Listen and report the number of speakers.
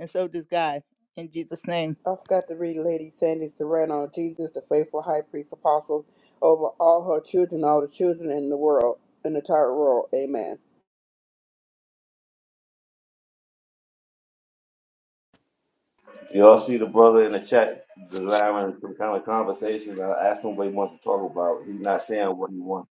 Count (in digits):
3